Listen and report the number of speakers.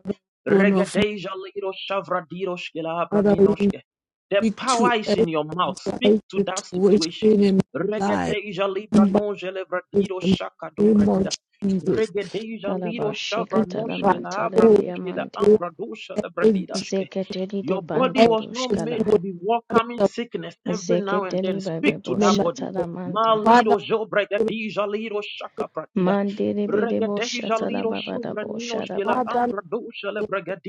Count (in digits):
3